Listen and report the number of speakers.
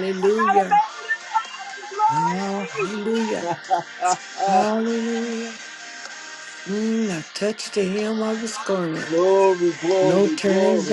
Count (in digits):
3